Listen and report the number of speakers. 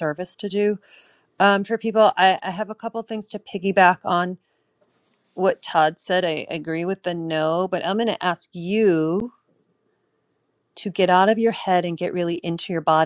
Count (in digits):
1